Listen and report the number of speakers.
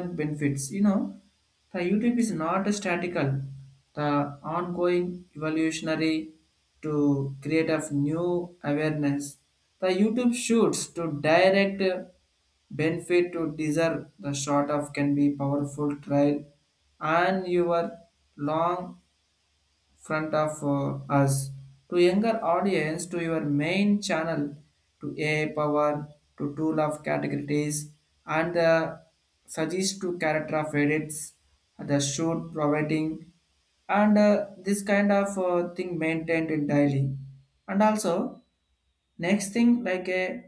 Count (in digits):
1